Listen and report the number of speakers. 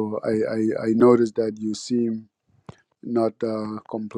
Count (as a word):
one